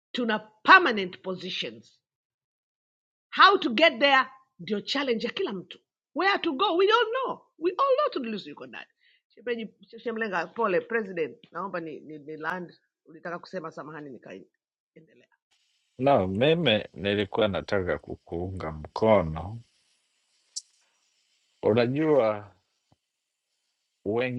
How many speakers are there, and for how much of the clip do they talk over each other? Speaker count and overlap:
2, no overlap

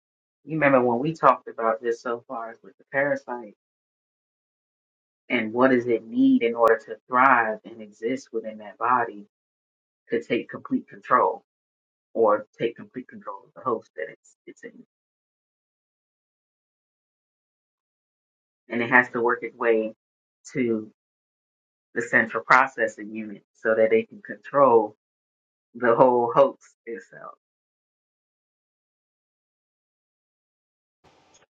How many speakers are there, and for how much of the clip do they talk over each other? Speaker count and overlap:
1, no overlap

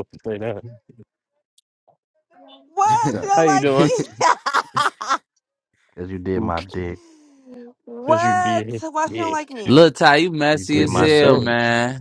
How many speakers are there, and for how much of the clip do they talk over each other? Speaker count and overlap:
4, about 29%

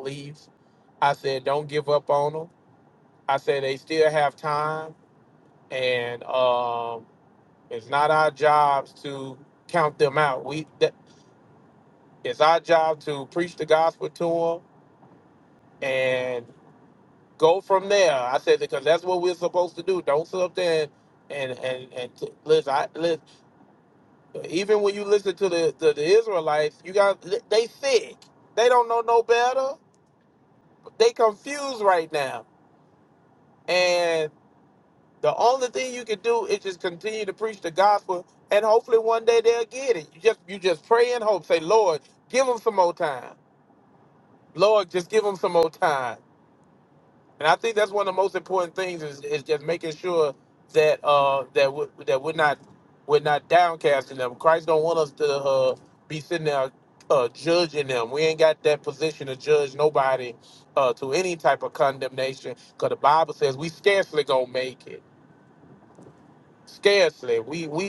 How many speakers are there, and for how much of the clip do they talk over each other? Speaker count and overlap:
1, no overlap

